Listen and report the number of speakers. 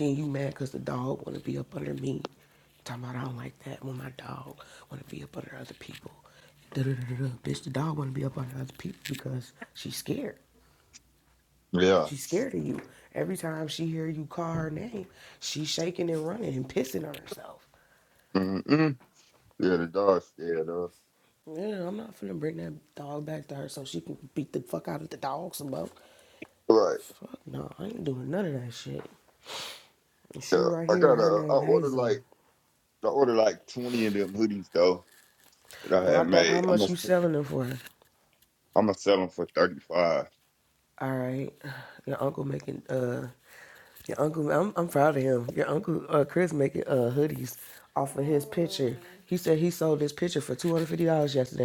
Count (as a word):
two